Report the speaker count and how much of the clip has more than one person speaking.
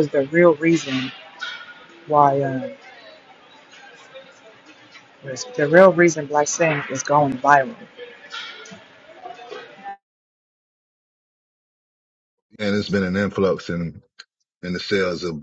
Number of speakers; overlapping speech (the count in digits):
2, no overlap